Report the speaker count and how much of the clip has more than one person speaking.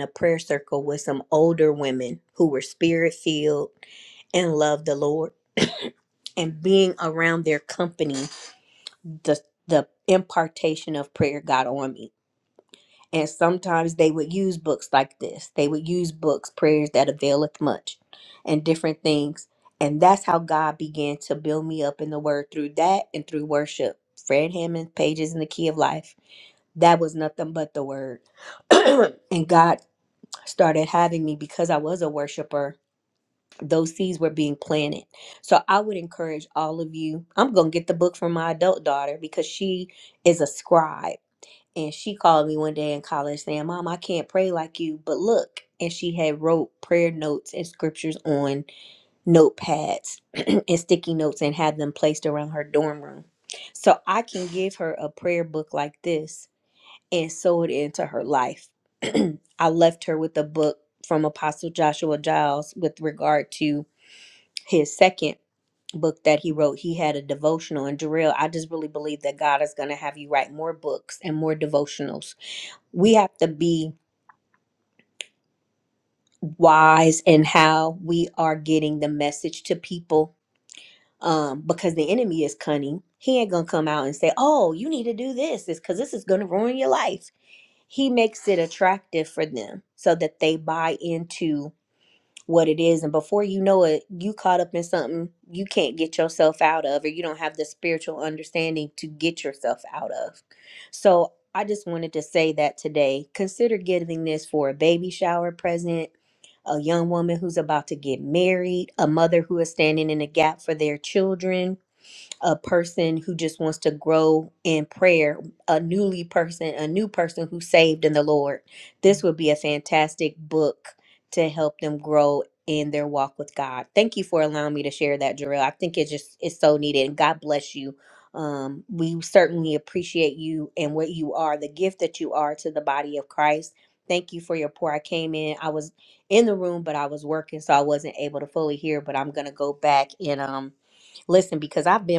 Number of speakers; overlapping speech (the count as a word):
one, no overlap